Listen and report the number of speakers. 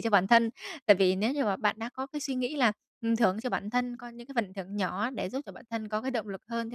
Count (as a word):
one